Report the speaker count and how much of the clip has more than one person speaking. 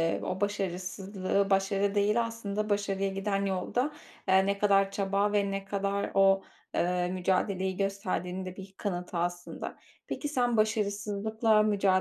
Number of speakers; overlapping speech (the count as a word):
one, no overlap